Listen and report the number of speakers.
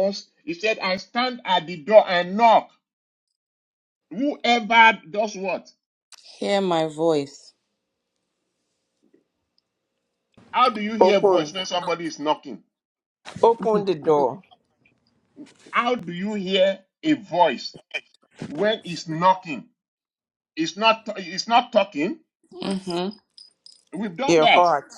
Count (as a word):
three